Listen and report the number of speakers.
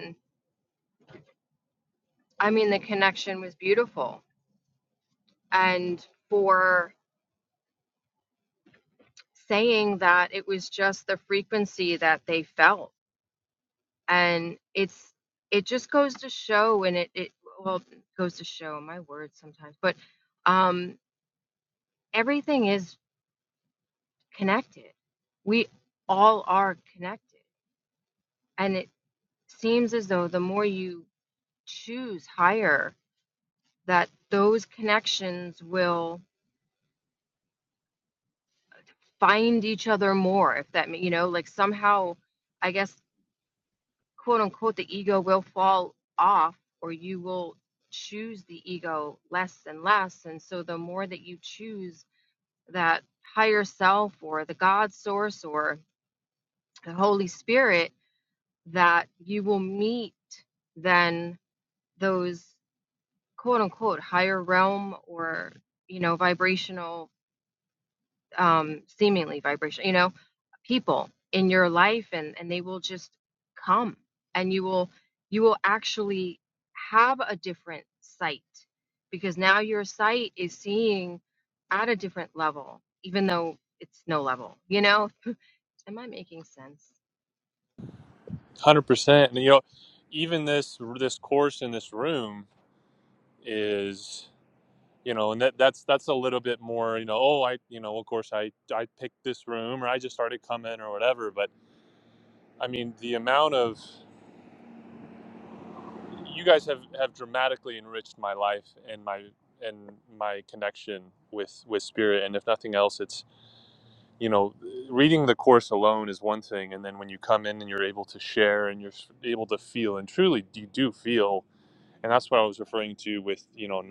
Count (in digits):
2